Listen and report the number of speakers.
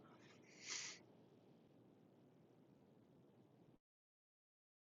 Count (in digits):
0